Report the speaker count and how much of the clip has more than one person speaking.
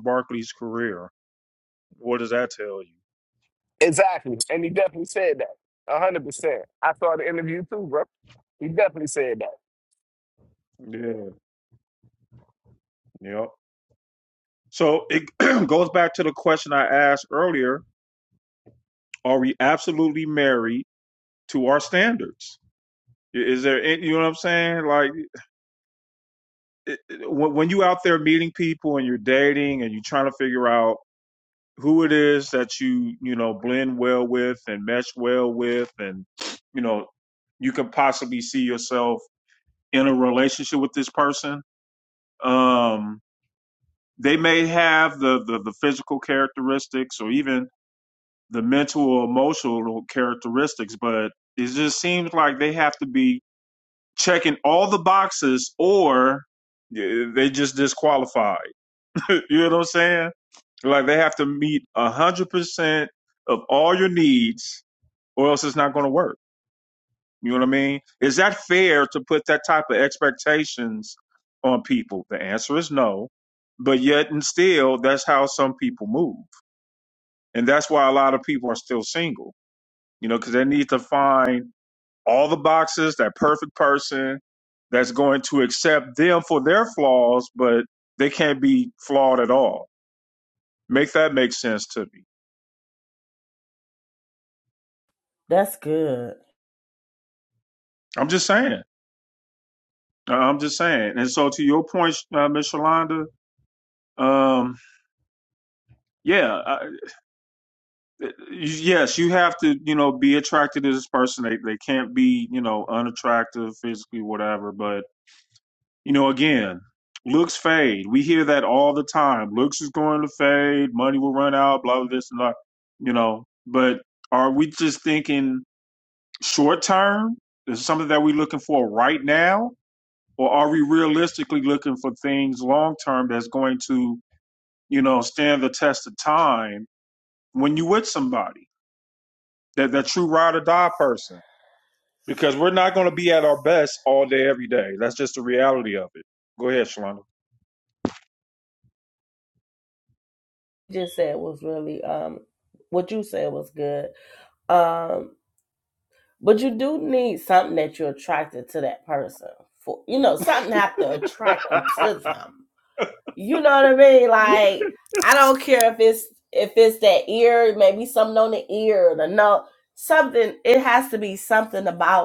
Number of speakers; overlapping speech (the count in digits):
3, no overlap